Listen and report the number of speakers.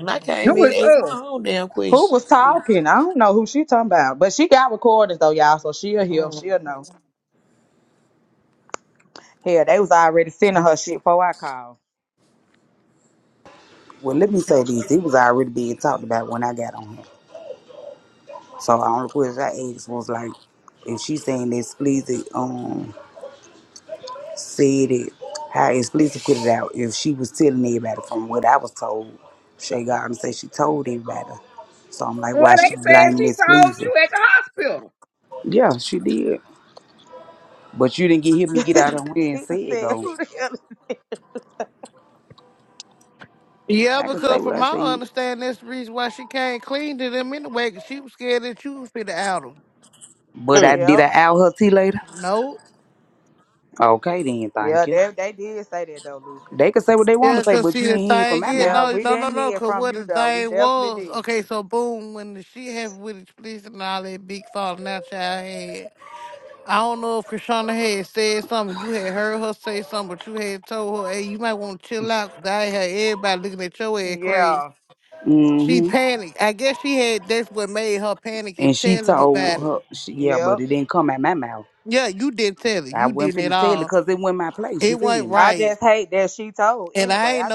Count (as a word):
five